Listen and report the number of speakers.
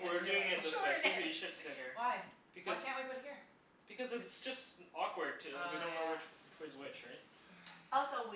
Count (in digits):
3